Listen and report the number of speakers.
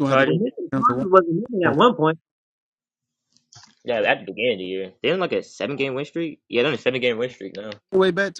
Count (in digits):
3